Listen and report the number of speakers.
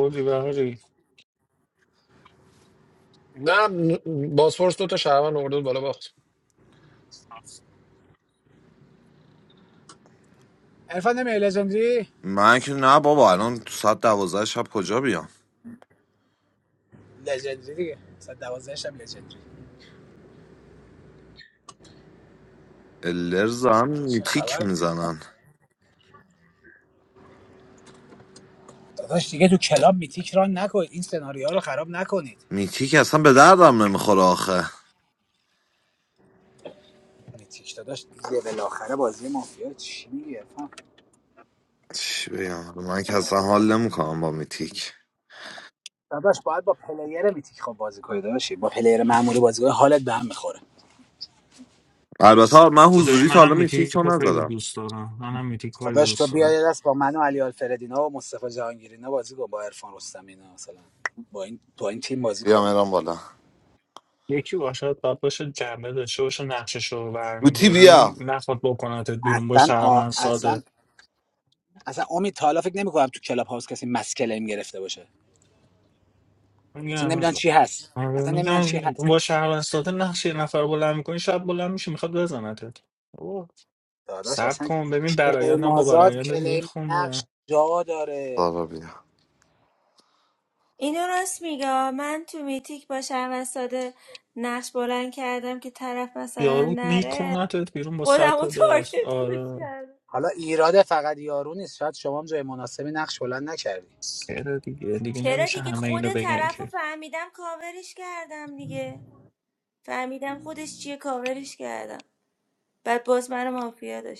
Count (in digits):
5